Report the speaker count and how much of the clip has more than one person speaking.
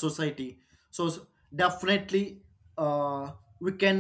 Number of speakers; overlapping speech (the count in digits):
1, no overlap